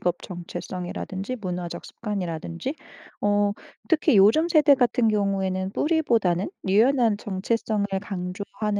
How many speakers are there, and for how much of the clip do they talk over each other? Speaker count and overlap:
one, no overlap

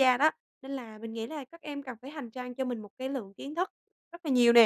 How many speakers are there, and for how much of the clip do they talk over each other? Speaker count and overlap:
one, no overlap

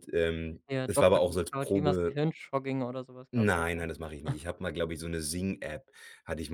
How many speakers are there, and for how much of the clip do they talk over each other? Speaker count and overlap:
two, about 30%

